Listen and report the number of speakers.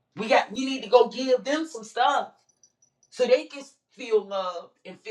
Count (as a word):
one